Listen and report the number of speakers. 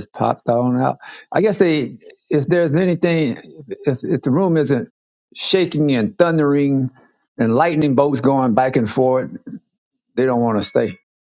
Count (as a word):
one